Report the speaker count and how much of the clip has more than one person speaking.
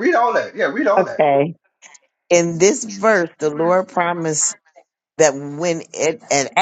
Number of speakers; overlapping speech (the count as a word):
two, about 5%